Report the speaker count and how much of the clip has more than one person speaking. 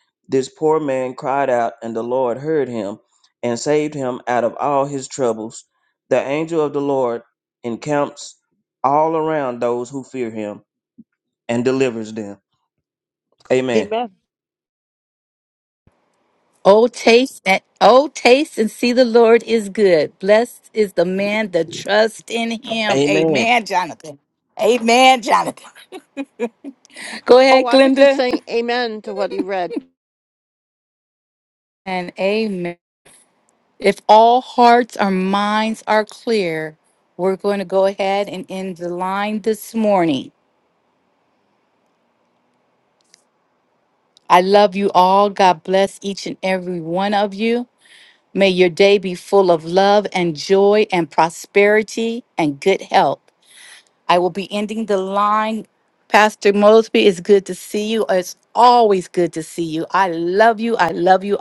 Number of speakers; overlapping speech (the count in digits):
3, about 2%